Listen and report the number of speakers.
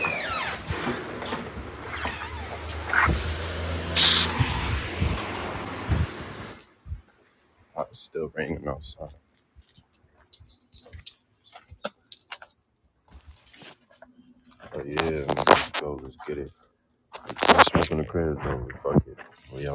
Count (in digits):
1